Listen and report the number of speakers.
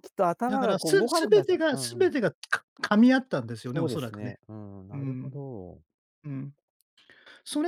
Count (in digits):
2